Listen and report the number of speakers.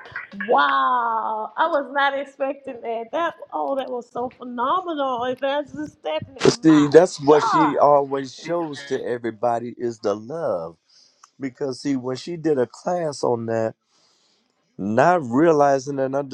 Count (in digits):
2